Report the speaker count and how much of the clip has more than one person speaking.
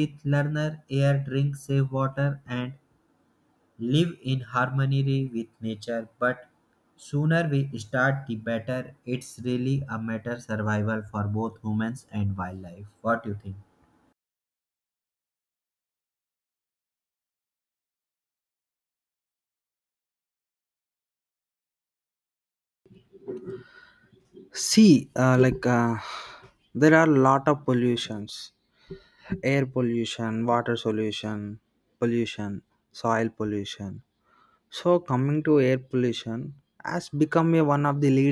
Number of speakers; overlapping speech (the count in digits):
2, no overlap